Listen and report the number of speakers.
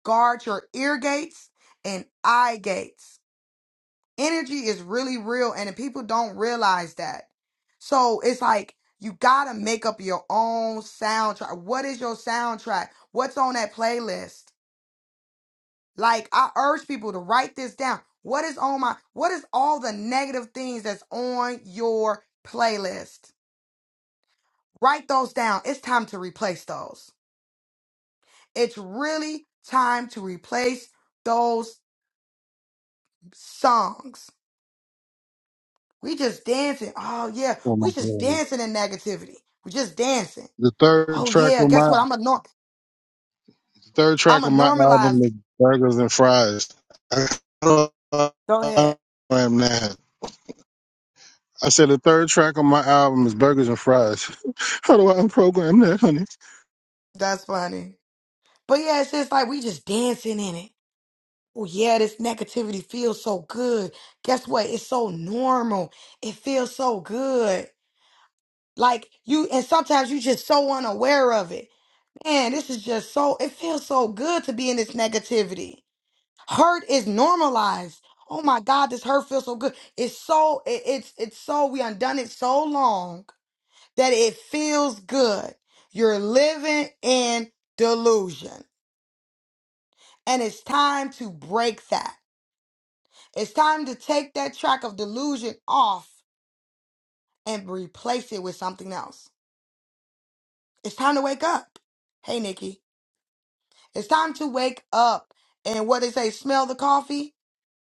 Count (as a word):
two